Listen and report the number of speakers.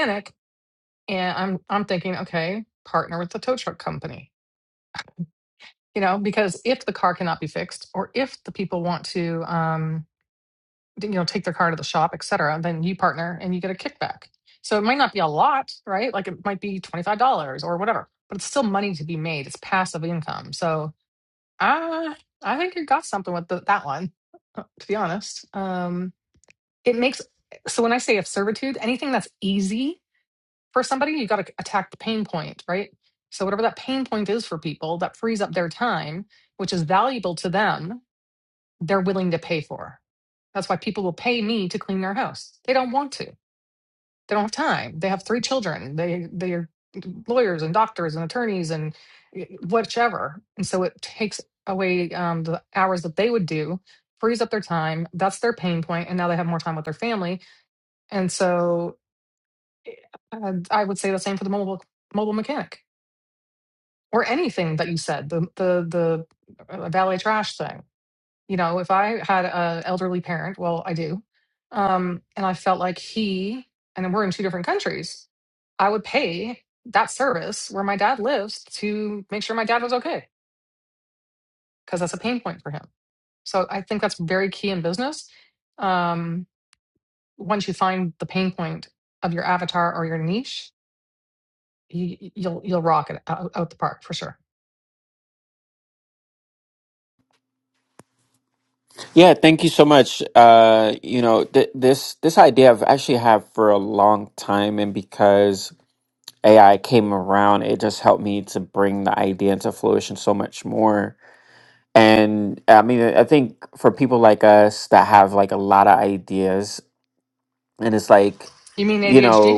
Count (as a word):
two